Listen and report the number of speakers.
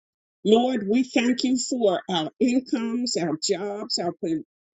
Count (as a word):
one